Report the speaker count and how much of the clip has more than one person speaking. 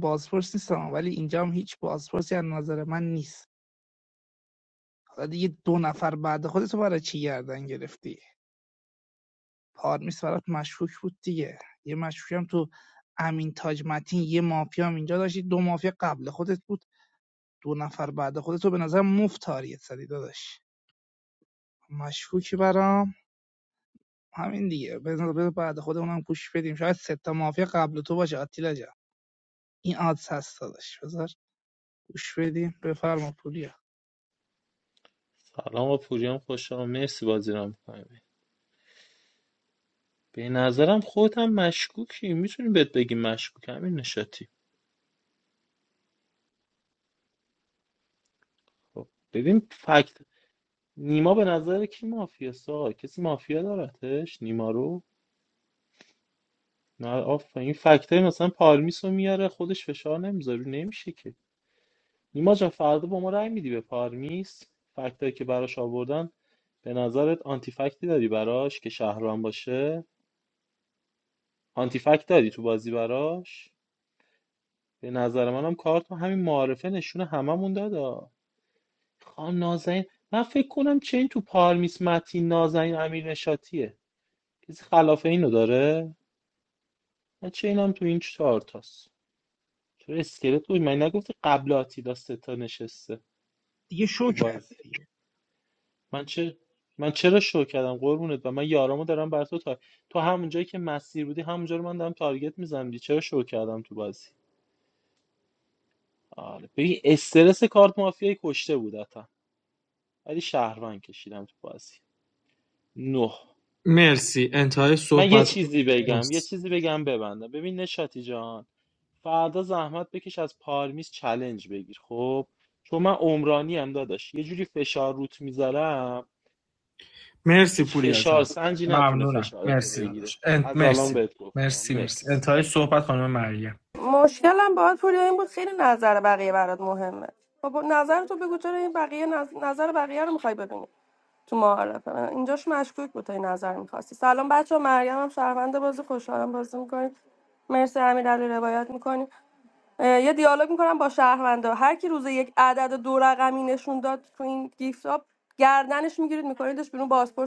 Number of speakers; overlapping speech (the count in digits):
4, about 3%